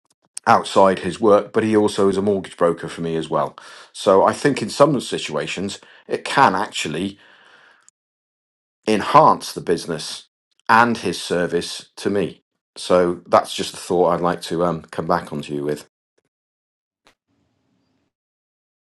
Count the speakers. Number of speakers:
one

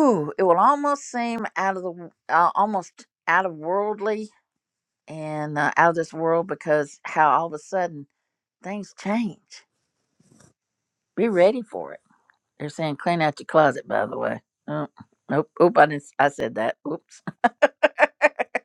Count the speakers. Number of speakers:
one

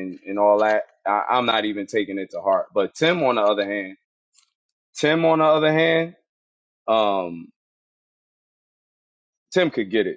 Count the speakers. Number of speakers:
one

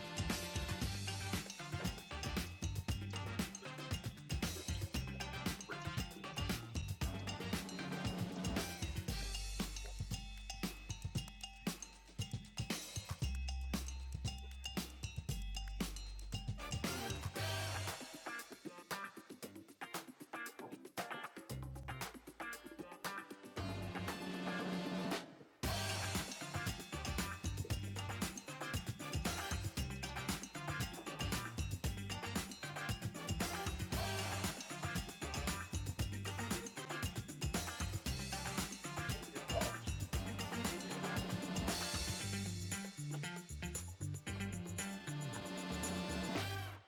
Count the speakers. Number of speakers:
zero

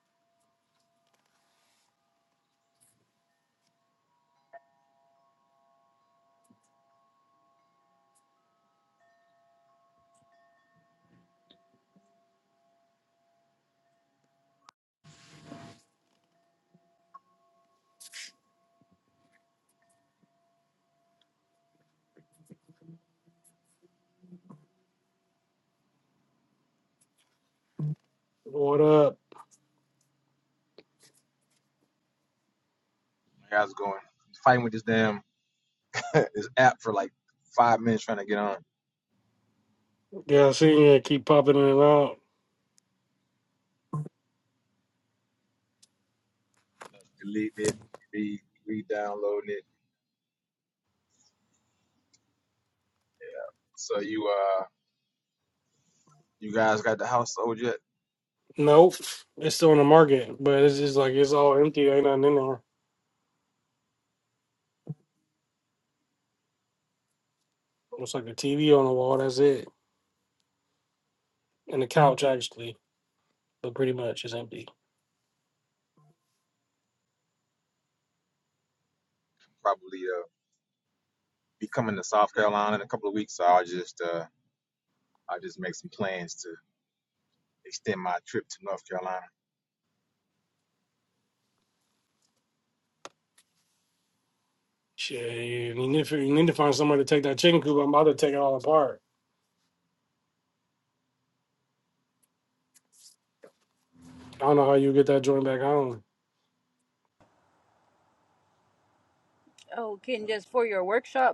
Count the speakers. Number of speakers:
three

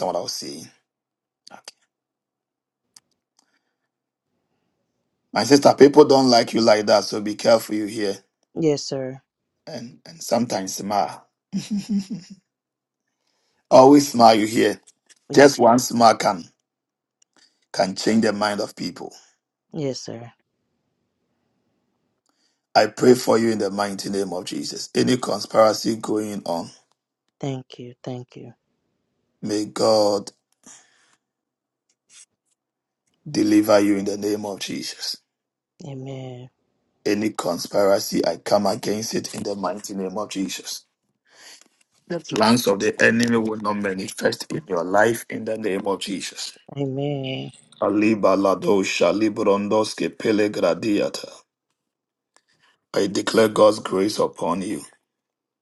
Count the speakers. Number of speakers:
two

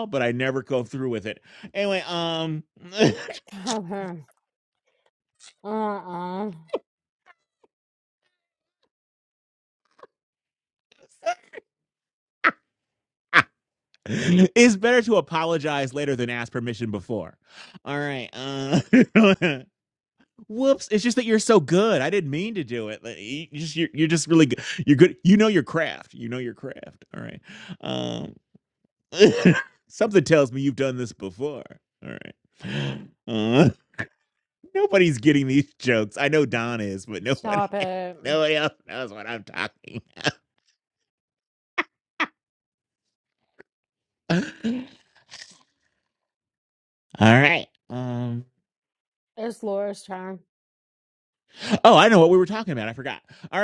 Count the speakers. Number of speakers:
two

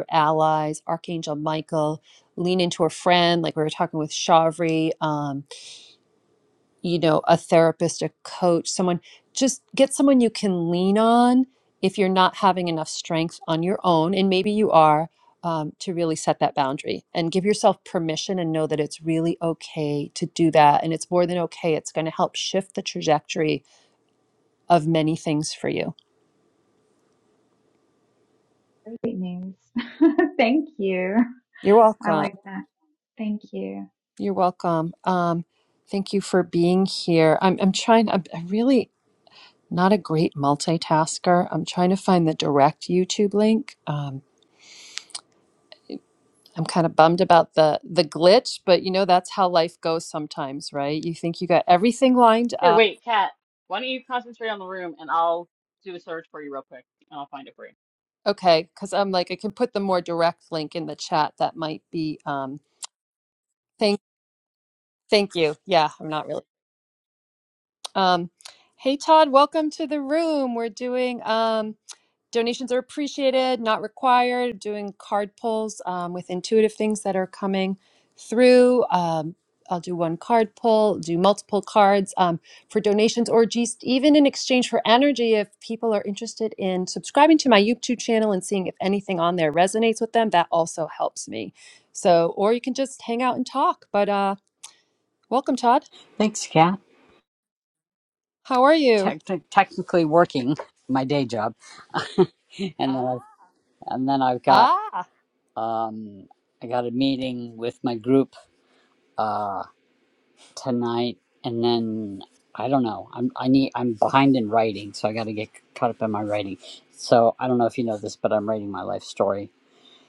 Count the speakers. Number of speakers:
four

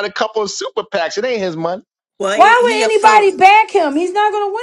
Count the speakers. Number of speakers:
three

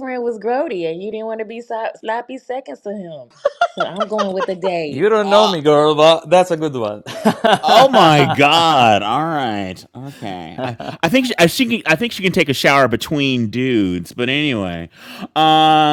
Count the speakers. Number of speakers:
three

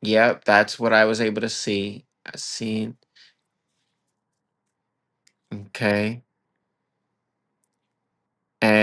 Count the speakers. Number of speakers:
one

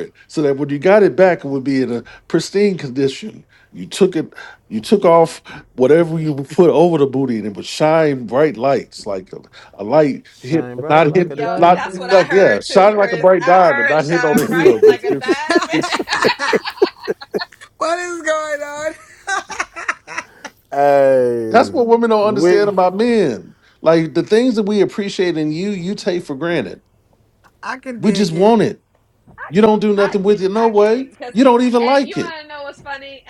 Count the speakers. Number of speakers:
four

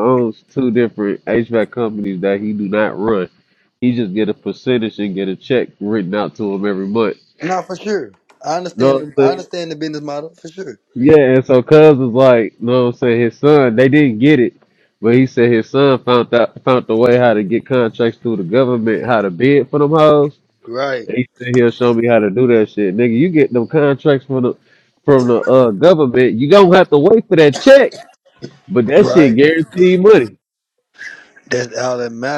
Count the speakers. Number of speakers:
two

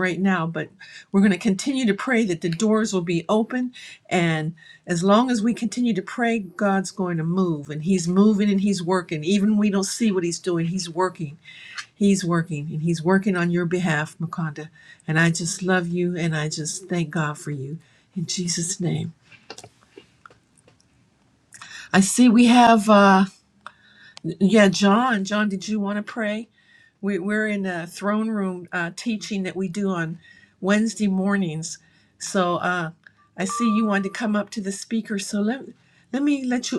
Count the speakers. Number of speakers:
one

